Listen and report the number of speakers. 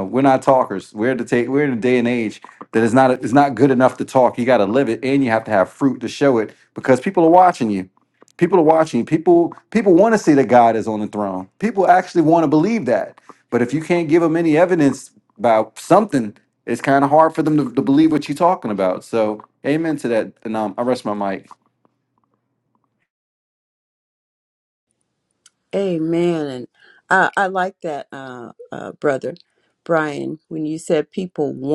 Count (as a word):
two